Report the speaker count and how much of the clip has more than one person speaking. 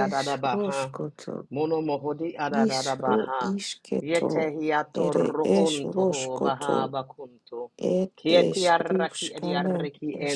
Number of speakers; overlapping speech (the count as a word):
two, about 58%